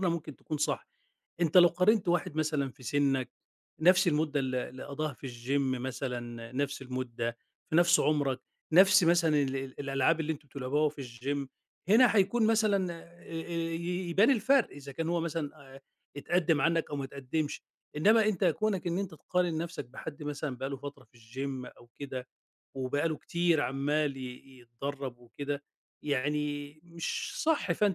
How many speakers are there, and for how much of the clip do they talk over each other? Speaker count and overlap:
one, no overlap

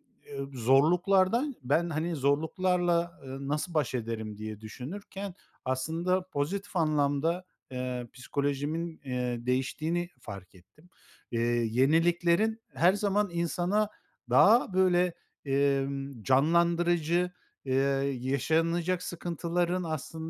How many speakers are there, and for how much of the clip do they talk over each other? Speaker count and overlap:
one, no overlap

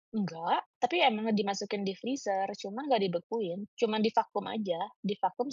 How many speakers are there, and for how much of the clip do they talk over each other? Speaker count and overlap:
one, no overlap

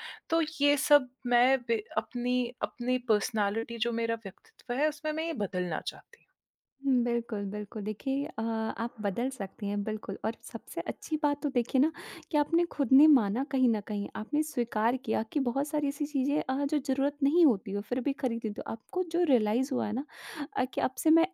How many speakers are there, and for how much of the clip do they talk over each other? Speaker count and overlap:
two, no overlap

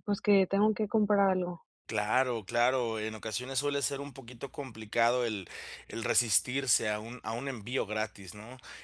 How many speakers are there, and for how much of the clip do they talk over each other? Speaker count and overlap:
two, no overlap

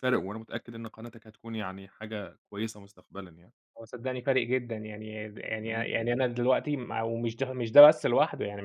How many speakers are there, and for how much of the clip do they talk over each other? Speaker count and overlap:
two, about 2%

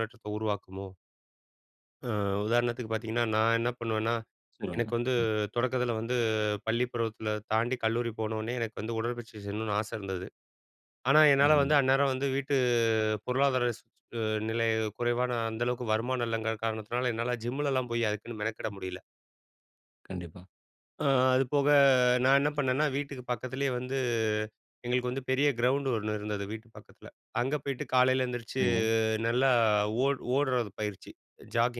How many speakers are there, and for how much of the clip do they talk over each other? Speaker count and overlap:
two, about 3%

